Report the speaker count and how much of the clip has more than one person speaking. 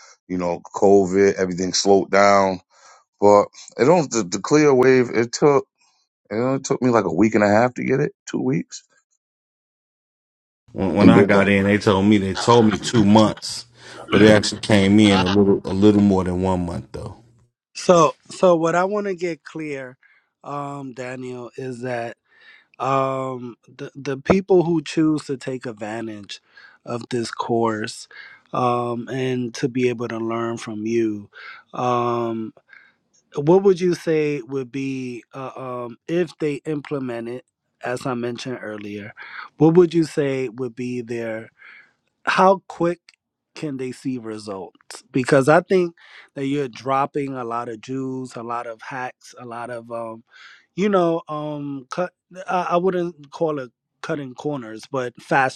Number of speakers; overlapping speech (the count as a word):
three, about 1%